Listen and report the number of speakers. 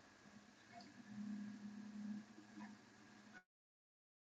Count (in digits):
0